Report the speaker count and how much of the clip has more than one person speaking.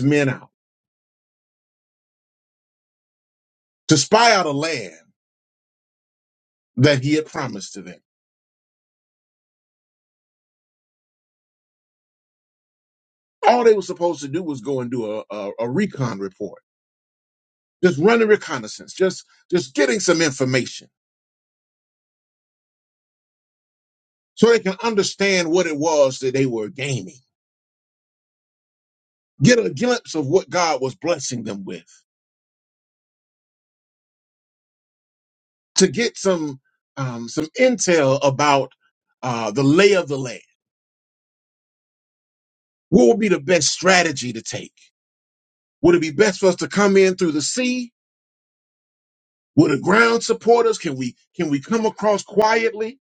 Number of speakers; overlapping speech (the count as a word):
one, no overlap